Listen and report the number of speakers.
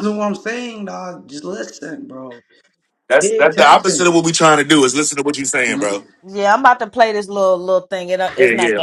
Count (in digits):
3